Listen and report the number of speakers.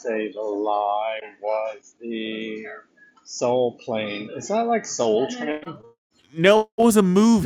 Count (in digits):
2